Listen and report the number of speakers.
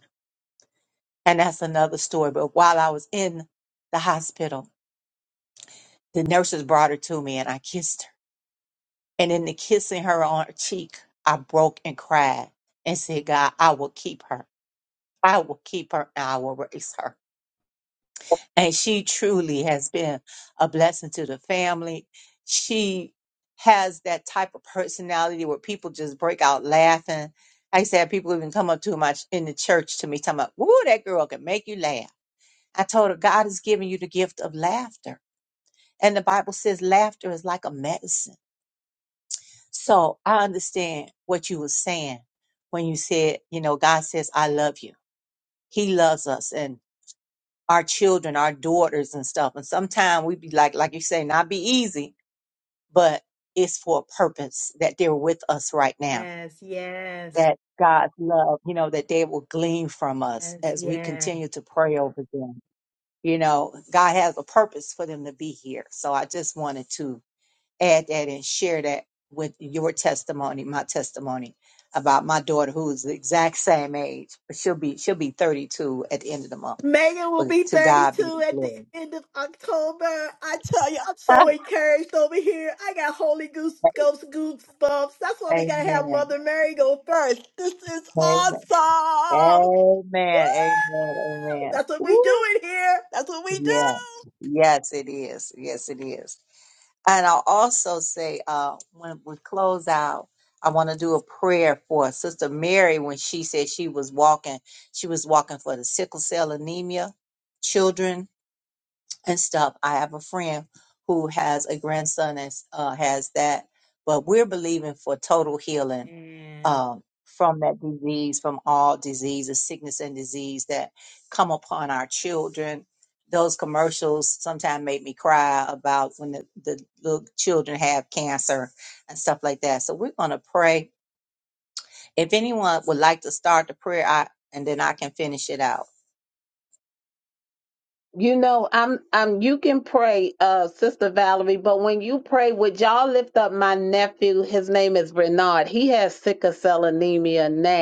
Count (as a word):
three